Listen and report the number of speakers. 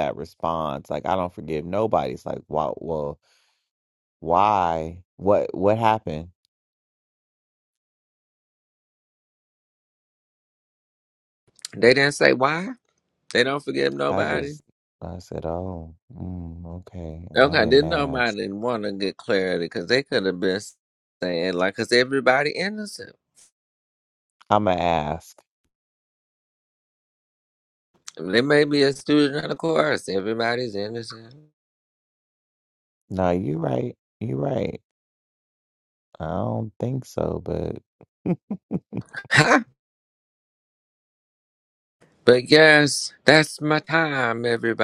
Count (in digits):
2